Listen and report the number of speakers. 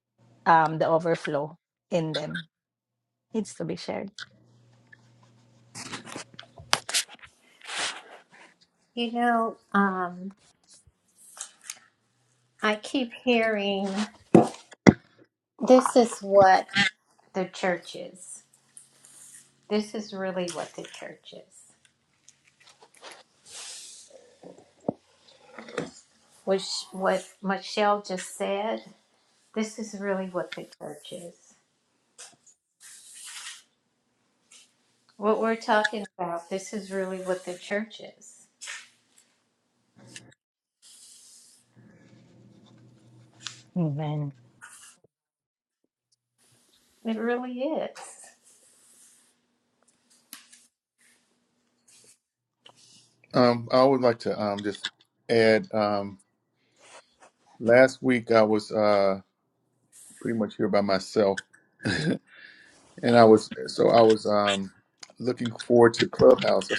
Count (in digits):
3